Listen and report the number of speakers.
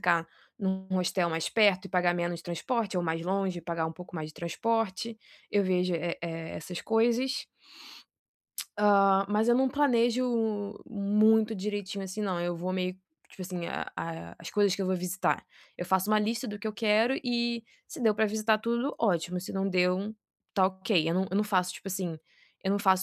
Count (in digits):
1